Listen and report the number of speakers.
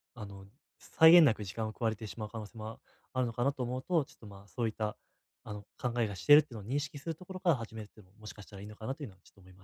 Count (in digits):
1